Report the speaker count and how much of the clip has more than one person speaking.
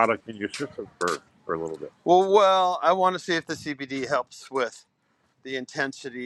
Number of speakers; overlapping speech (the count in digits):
2, no overlap